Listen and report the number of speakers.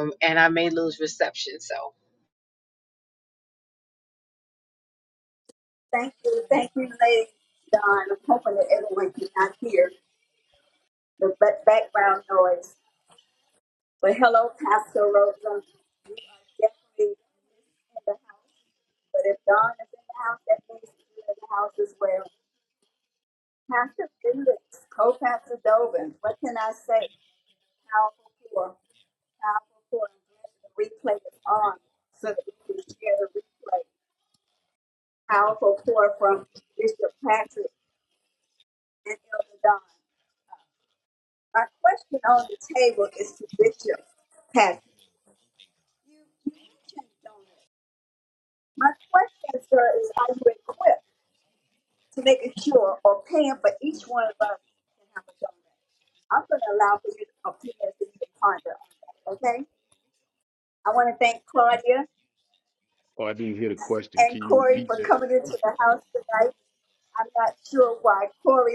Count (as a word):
three